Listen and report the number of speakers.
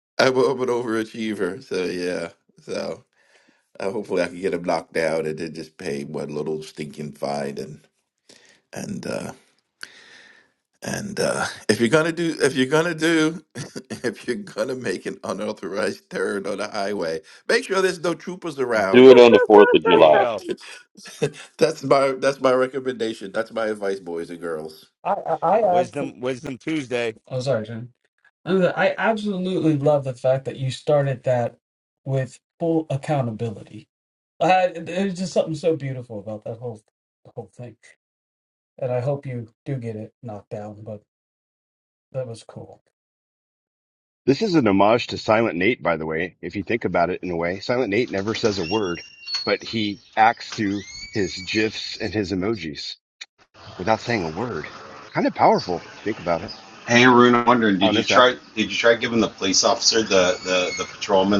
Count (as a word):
six